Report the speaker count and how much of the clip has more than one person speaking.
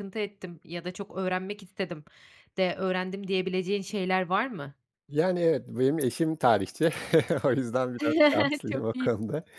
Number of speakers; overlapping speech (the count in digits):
2, about 4%